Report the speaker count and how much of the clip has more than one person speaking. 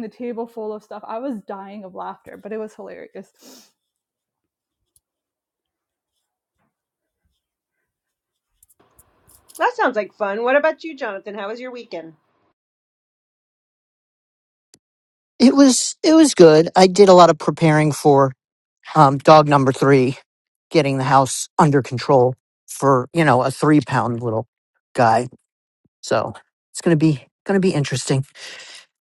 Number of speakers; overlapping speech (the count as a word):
three, no overlap